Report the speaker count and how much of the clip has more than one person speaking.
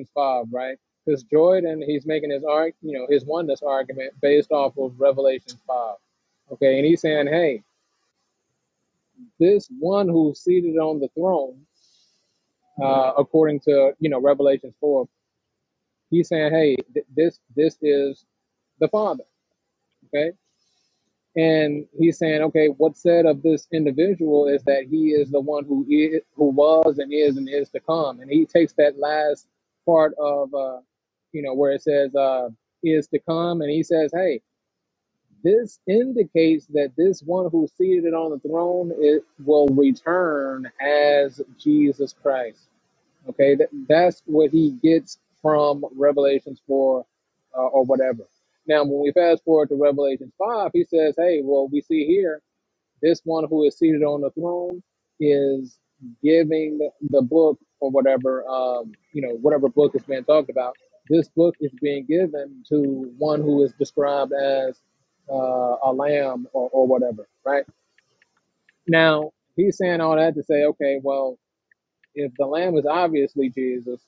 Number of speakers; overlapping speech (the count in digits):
1, no overlap